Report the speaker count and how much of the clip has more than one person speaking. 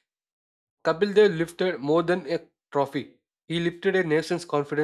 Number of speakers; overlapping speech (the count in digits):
1, no overlap